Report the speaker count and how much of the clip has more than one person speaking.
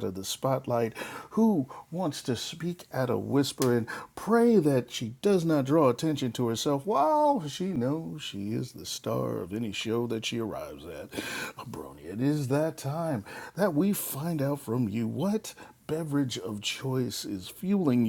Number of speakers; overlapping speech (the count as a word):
one, no overlap